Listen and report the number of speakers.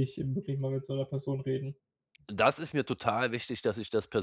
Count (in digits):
2